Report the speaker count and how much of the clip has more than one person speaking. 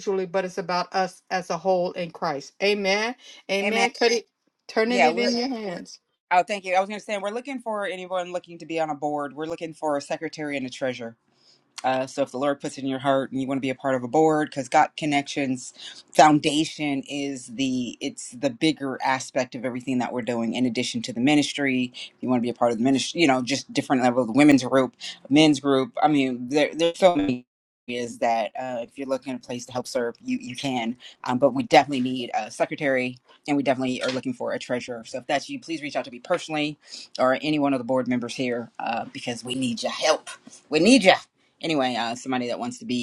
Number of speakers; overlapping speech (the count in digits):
2, about 2%